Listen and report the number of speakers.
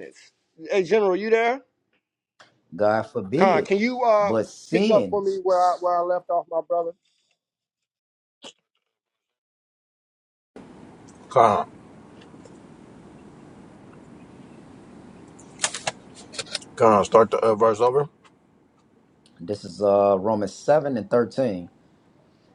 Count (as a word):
three